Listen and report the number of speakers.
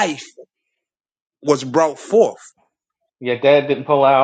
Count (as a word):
two